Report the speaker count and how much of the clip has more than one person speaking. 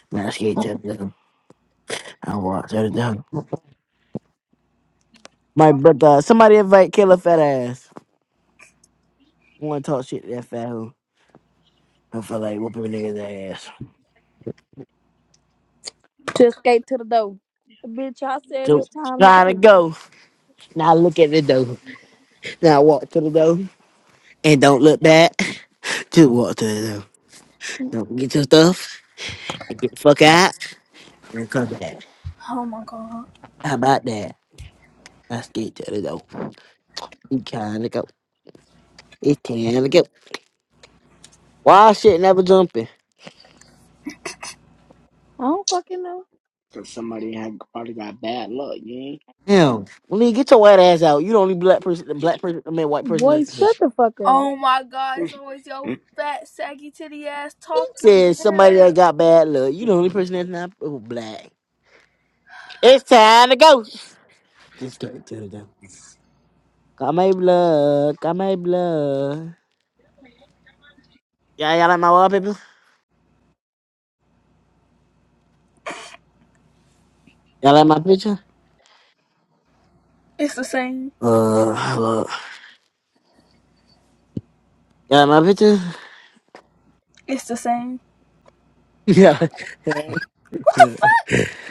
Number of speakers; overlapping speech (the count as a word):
four, about 3%